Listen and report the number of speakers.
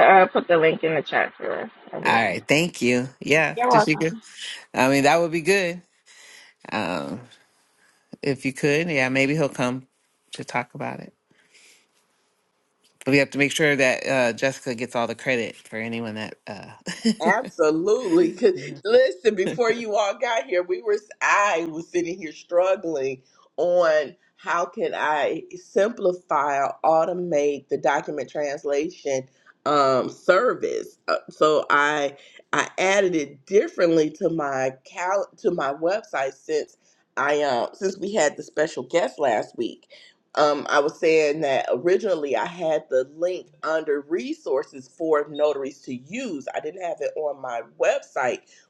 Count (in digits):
3